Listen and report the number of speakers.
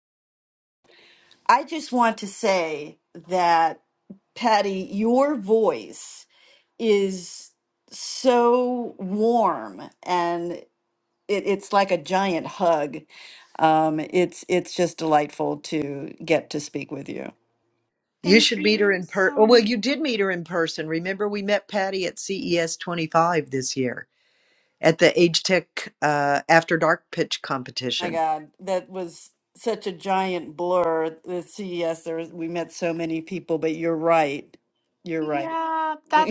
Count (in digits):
3